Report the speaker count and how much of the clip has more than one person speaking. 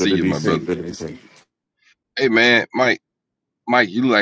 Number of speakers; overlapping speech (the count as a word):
two, about 16%